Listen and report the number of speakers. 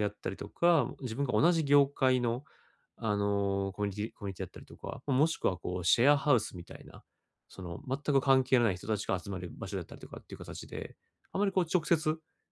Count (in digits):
1